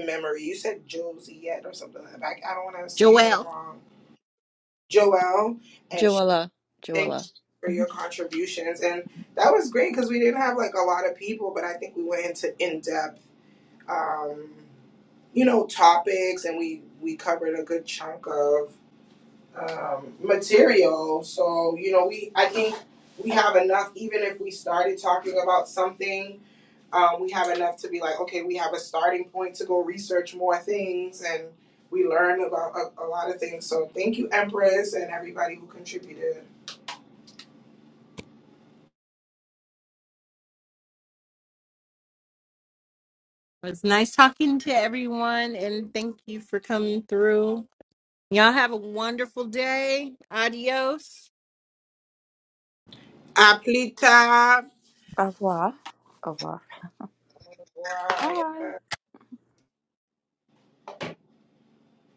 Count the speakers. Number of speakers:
three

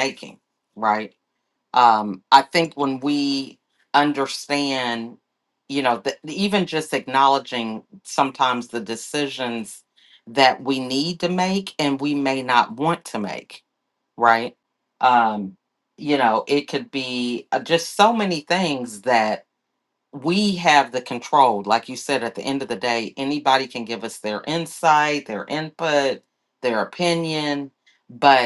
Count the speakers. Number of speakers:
one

